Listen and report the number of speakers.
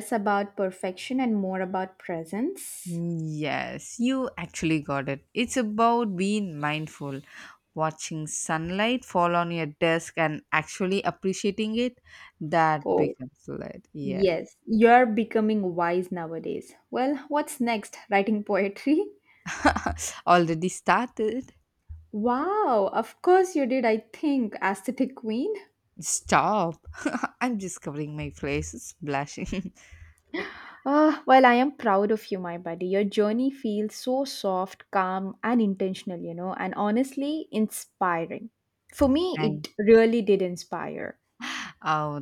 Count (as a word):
two